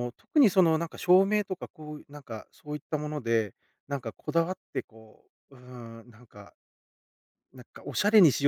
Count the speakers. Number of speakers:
one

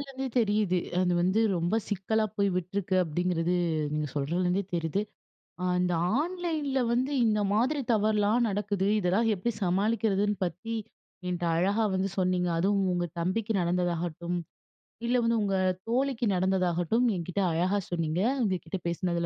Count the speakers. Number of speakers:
one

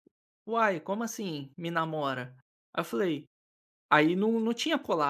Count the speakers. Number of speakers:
one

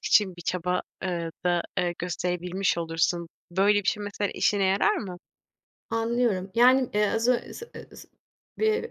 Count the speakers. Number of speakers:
two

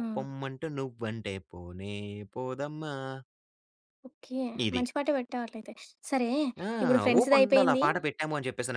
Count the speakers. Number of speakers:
two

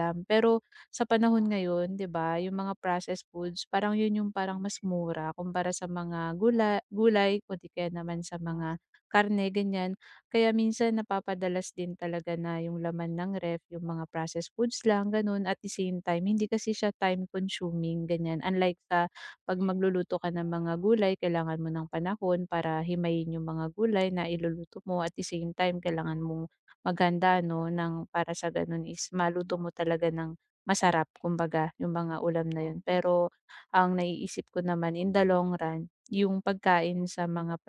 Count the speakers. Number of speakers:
one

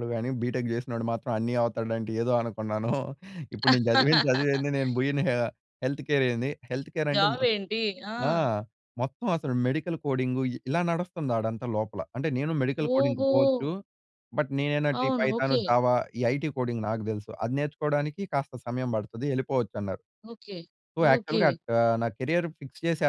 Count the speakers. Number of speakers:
two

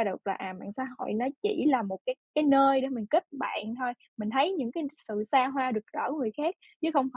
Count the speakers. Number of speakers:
one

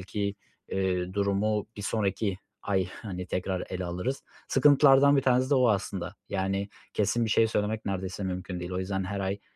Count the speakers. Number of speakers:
one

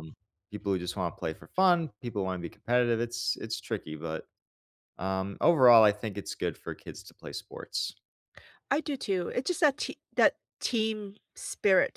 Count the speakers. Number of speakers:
two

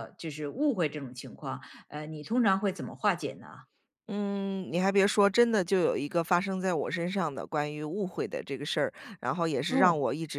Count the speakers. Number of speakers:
two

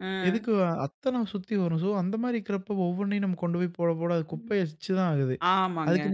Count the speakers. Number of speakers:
two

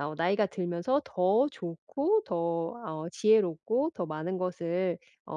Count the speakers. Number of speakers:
one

